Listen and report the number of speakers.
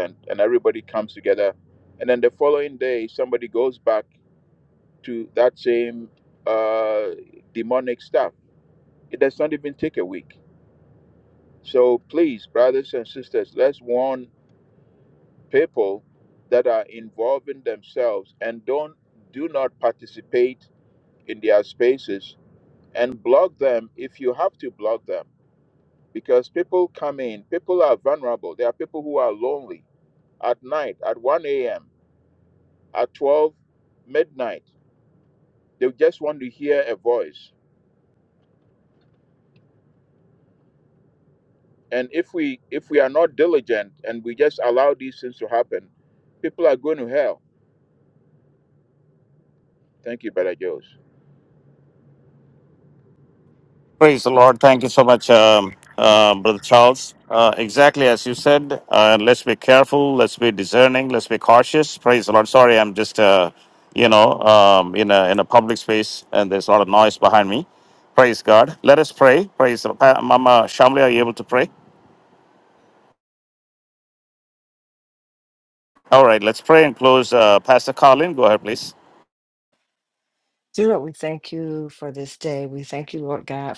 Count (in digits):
3